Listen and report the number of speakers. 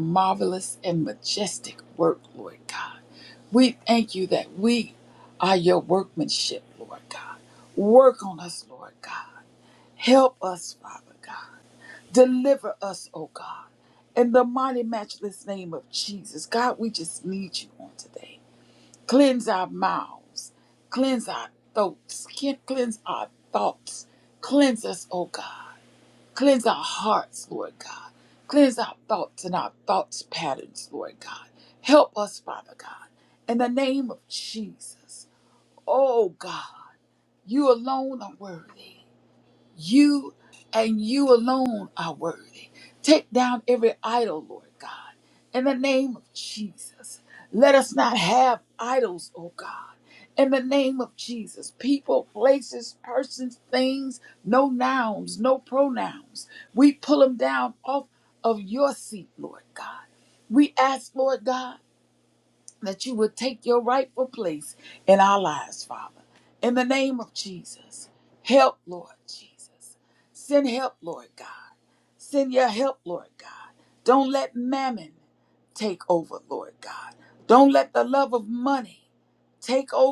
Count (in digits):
1